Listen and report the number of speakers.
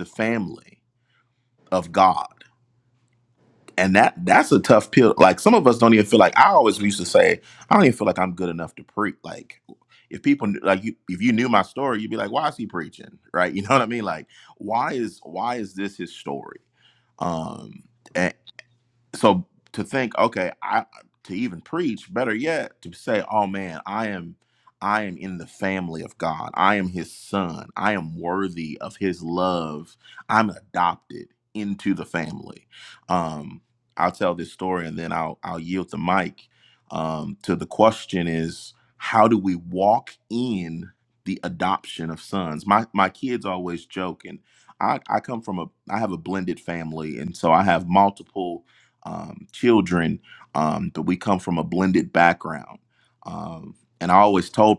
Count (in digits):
1